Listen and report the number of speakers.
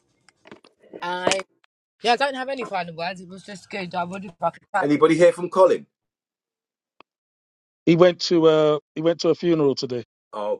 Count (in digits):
3